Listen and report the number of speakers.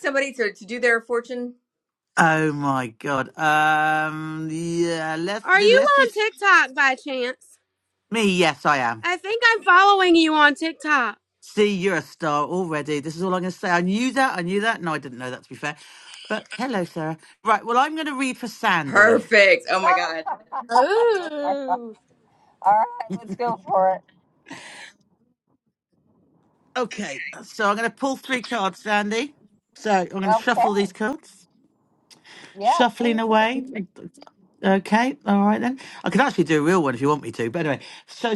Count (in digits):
4